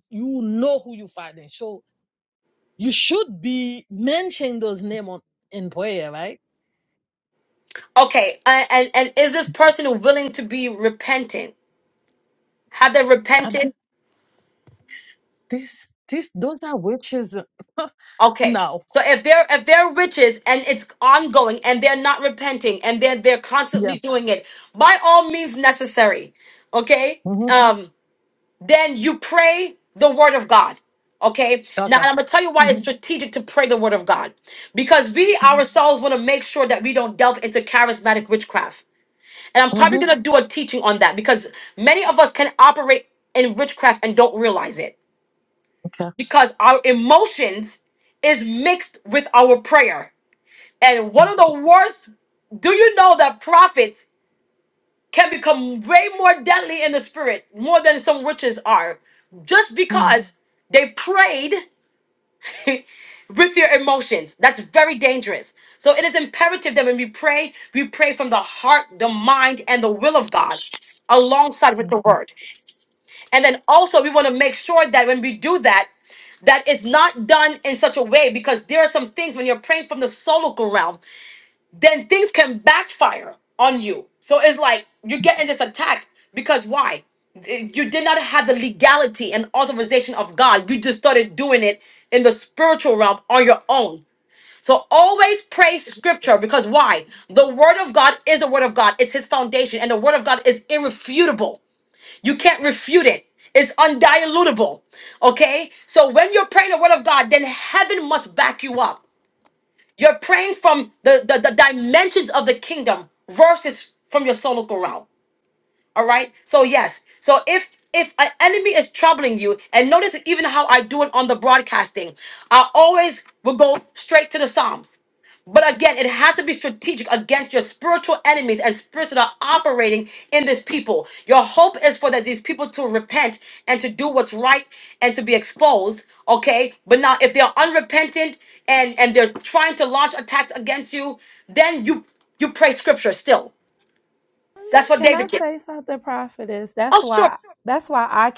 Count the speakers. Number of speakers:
3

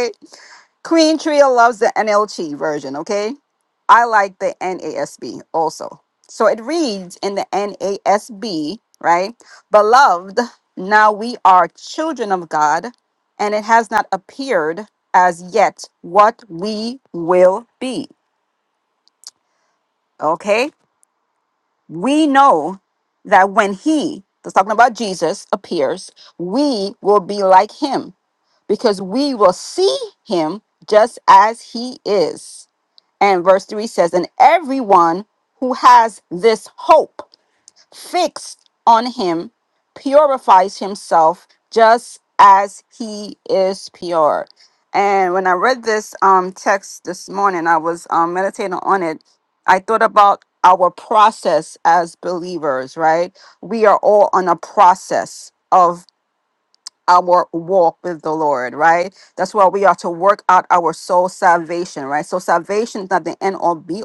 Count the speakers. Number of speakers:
1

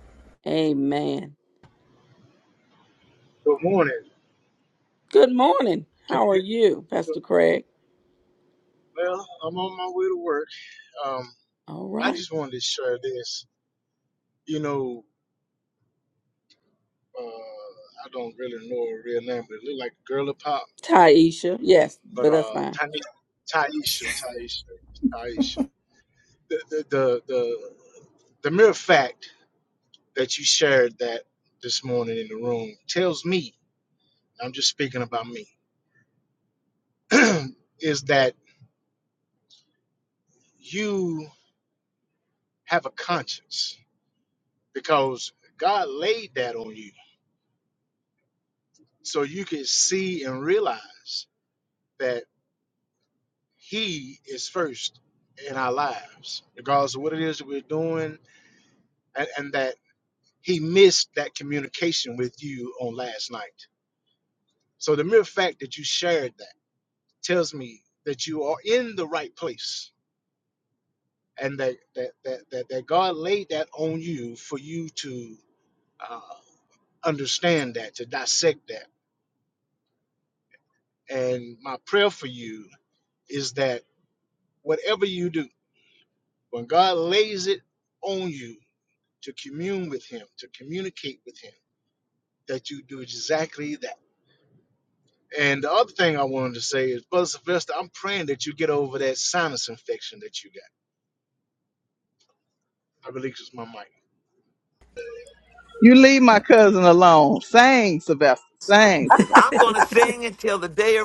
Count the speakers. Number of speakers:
4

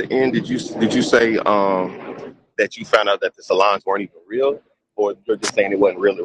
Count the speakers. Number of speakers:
1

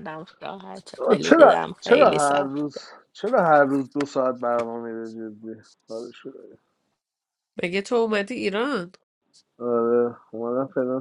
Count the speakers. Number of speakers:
3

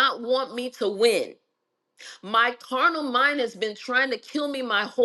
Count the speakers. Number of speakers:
1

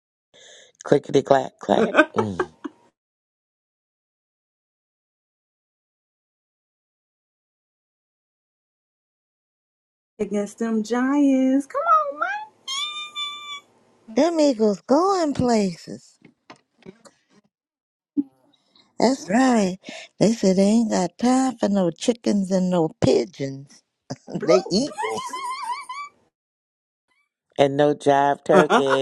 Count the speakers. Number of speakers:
3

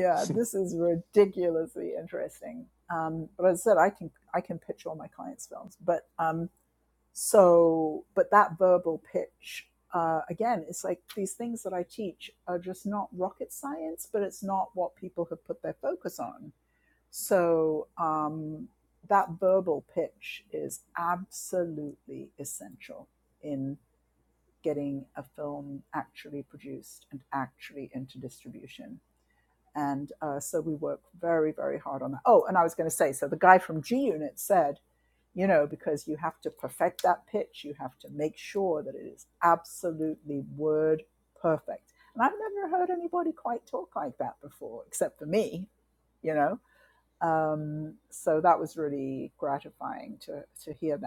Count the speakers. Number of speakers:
1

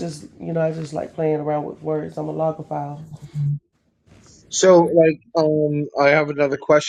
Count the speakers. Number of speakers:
2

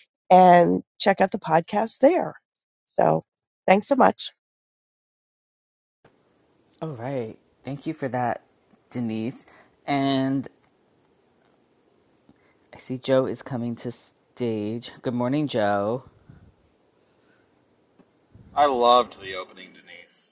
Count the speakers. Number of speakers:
3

